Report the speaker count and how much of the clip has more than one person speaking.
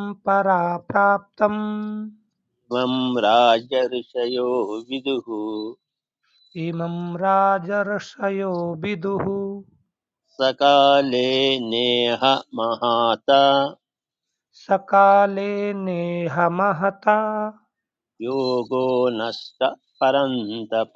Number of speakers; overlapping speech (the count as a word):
two, no overlap